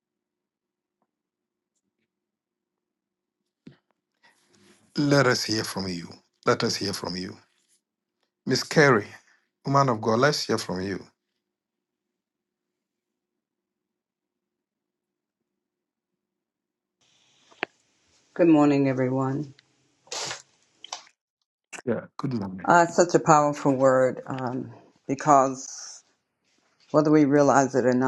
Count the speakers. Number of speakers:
two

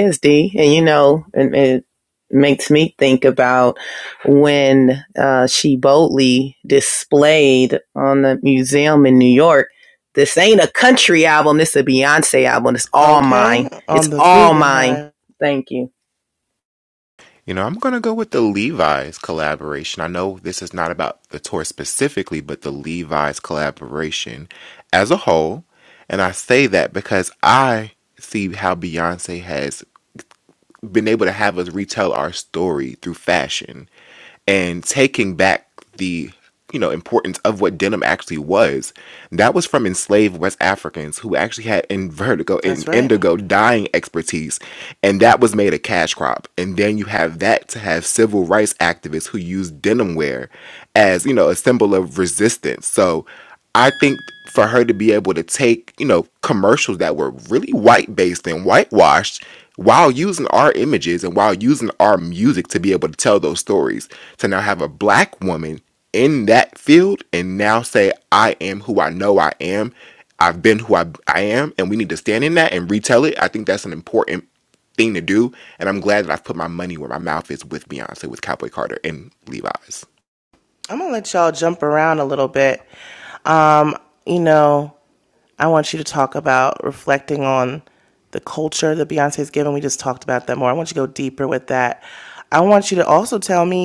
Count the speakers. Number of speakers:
three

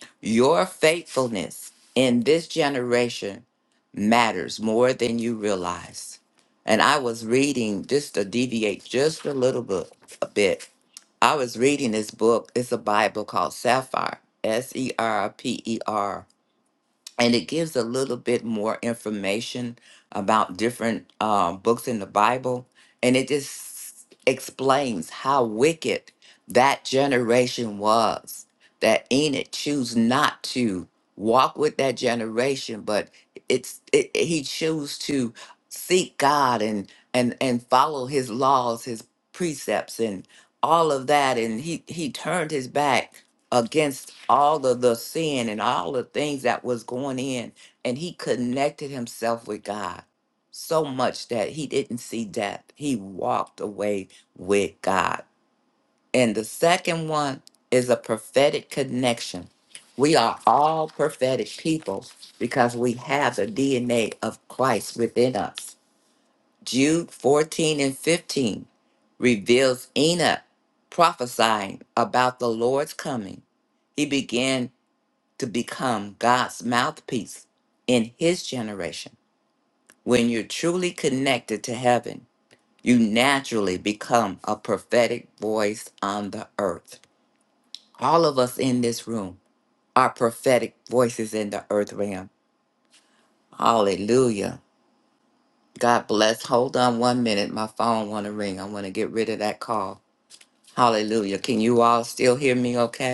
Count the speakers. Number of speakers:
one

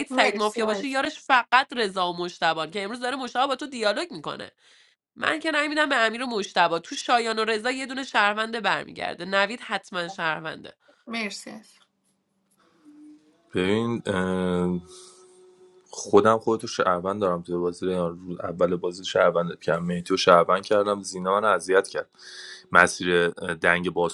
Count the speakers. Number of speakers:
three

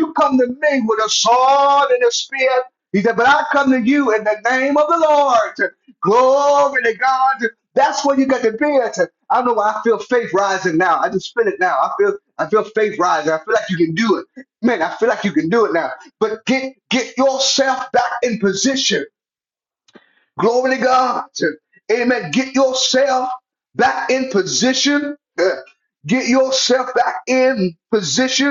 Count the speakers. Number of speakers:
one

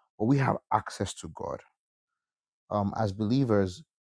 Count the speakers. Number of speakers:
one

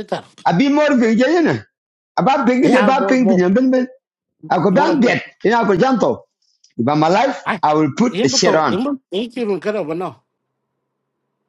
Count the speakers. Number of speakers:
two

